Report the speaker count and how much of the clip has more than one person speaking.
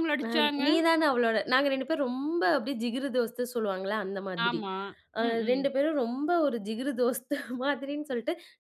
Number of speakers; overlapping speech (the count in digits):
2, about 13%